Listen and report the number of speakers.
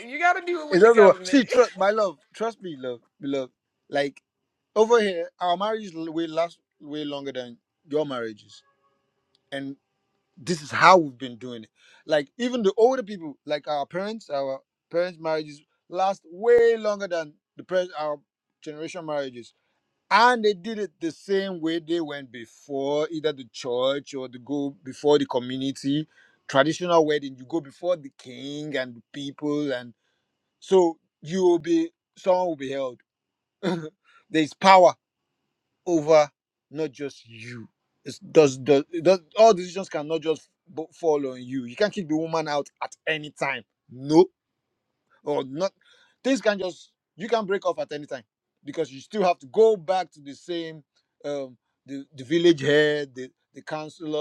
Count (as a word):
two